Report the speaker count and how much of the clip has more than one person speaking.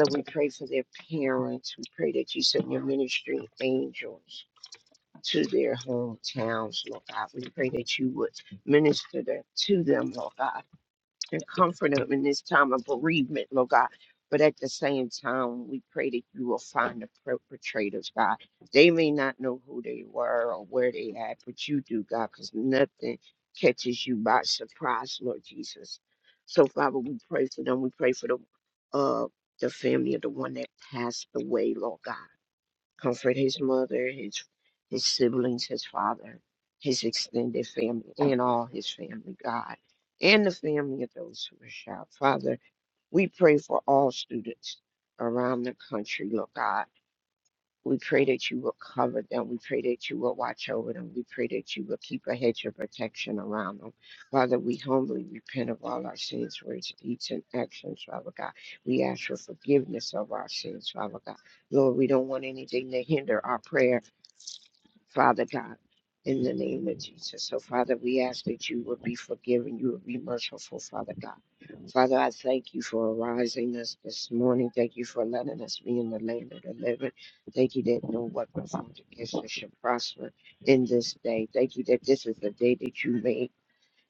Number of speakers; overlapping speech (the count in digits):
1, no overlap